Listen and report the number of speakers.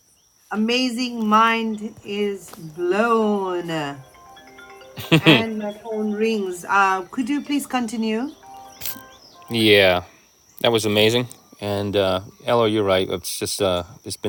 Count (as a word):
two